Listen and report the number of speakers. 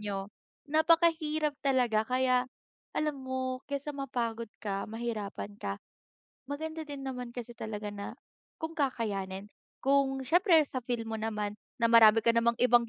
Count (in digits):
1